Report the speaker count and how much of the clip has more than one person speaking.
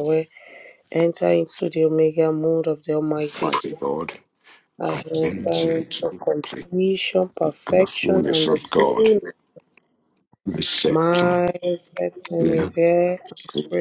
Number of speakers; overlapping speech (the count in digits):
2, about 31%